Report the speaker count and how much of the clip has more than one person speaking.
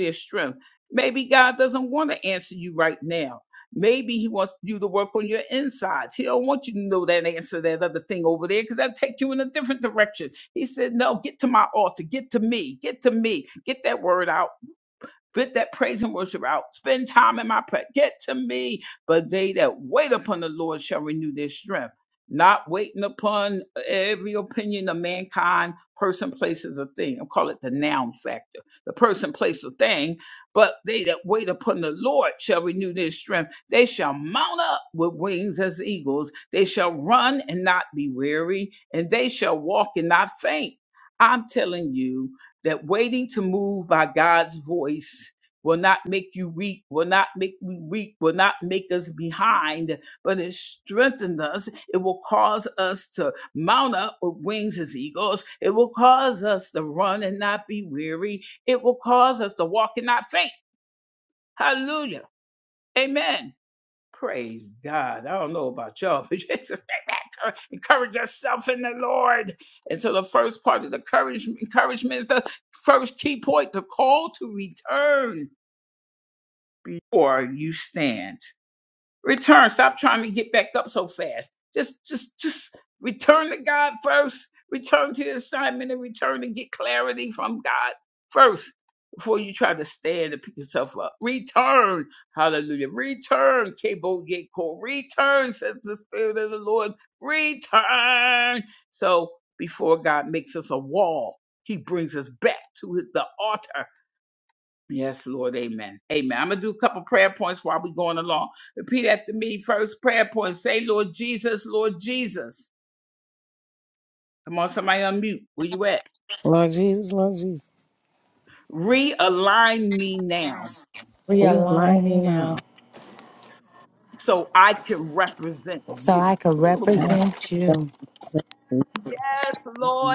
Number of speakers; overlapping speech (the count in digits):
3, about 1%